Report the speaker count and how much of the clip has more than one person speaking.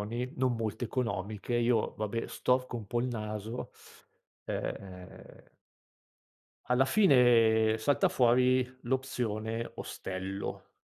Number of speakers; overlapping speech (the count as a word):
one, no overlap